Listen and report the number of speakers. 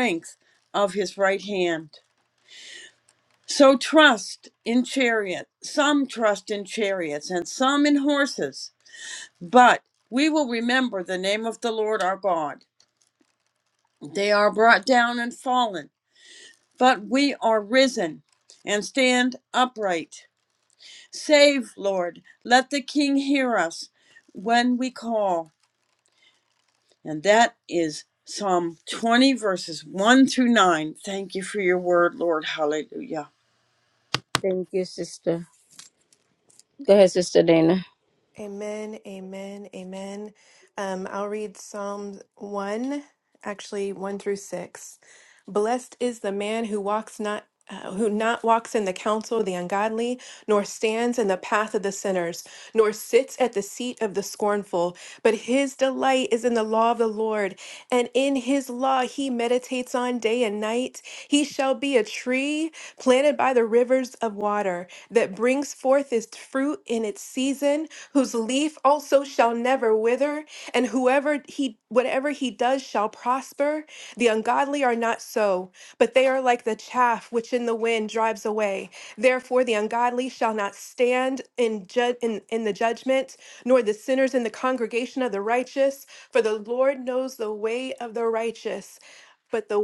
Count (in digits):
3